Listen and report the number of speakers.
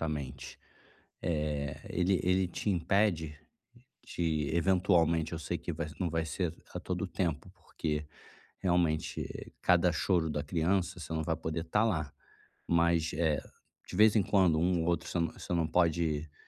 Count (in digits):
1